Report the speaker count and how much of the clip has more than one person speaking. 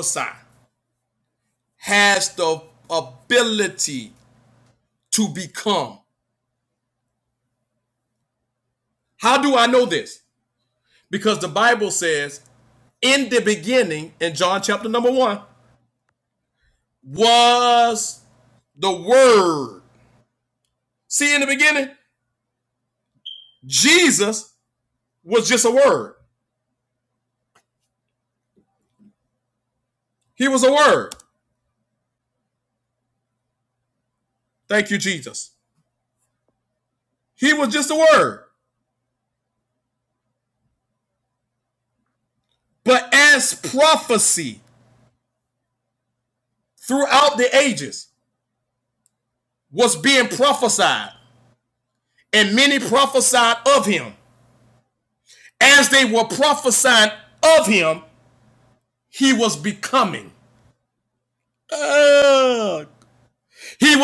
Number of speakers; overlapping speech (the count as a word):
one, no overlap